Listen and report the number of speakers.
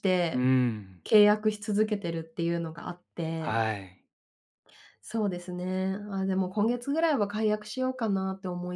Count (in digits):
2